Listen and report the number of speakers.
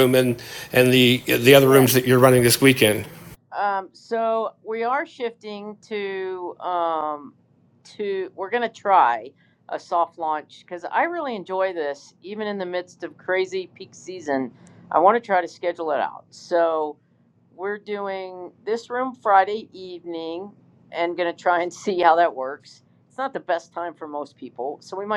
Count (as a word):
two